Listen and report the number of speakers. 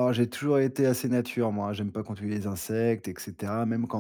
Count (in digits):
1